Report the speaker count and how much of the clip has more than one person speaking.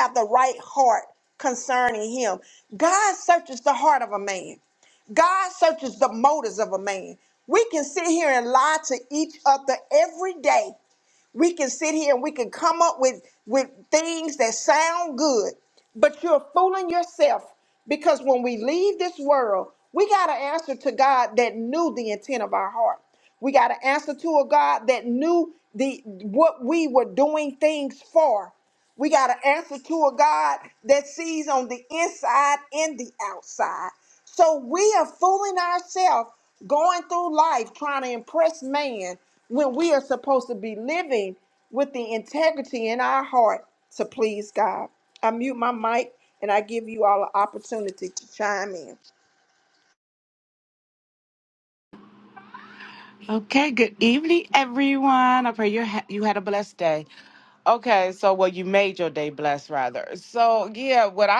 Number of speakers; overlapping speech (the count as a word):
two, no overlap